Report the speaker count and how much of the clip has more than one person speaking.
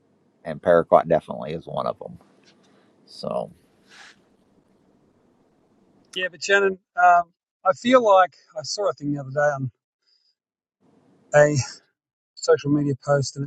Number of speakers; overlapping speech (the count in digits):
2, no overlap